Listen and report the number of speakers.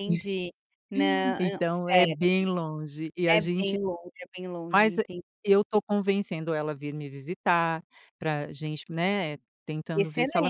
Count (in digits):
2